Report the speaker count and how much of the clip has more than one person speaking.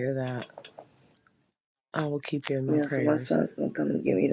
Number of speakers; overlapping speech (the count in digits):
2, about 16%